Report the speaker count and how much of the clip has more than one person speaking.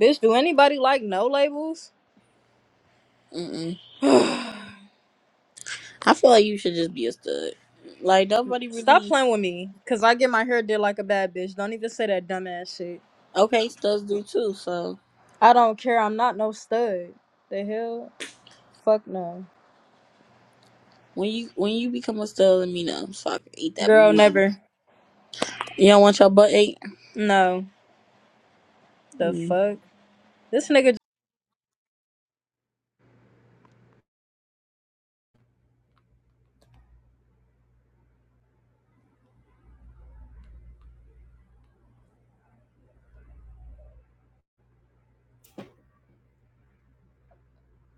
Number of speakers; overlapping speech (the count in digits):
2, about 2%